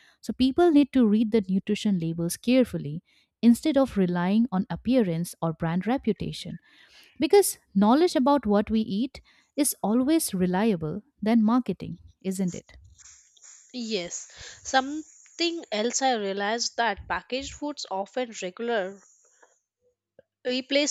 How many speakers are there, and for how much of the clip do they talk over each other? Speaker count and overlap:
two, no overlap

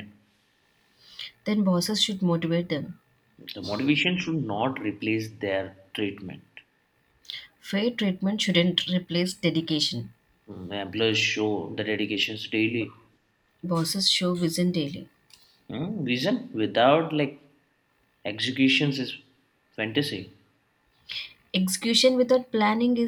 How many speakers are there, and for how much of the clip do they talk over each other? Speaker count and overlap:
two, no overlap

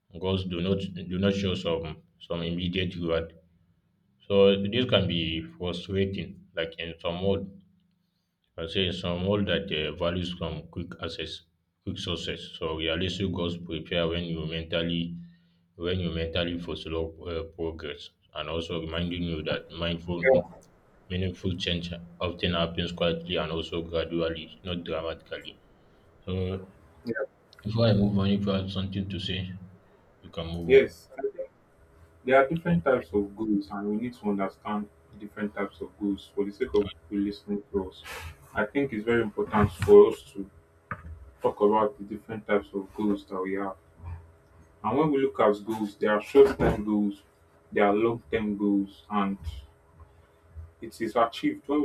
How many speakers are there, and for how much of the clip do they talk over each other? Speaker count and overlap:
two, under 1%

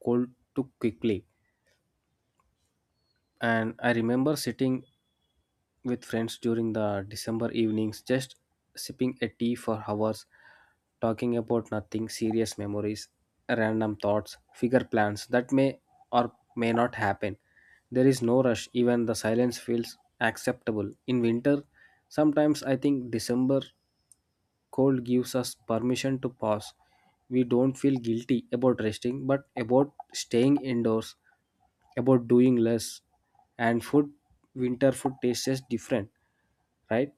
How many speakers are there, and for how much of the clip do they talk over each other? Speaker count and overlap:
one, no overlap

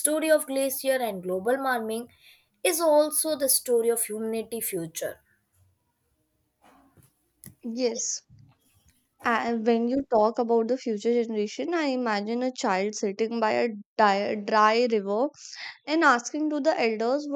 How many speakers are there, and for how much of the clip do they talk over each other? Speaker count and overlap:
two, no overlap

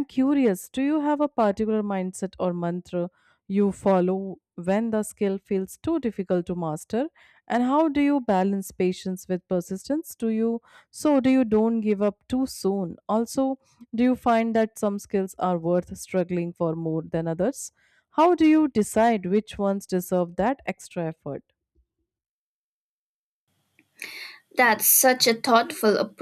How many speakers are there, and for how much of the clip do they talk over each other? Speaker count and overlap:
two, no overlap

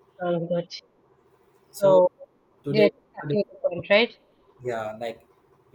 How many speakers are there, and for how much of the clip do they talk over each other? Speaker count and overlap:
two, about 7%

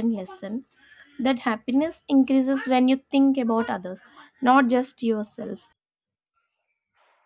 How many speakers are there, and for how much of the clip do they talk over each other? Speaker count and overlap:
one, no overlap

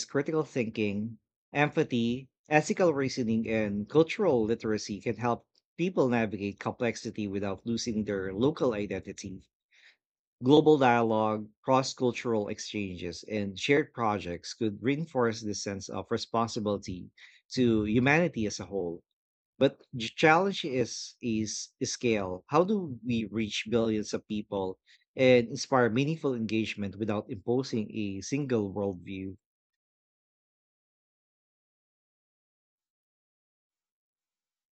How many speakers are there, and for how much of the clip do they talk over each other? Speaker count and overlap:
one, no overlap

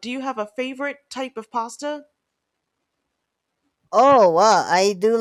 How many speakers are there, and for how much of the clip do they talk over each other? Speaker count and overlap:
two, no overlap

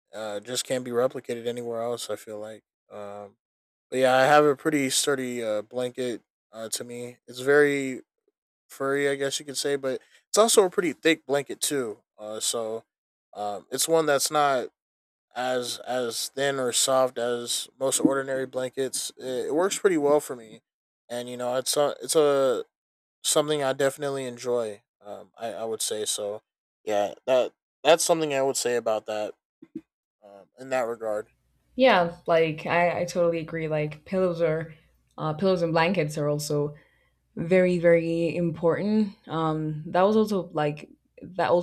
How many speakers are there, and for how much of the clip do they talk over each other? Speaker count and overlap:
two, no overlap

